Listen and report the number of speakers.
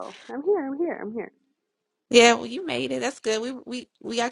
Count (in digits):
2